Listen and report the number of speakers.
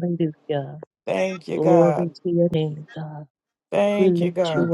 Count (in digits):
2